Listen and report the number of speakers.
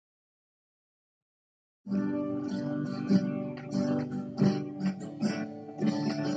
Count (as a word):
zero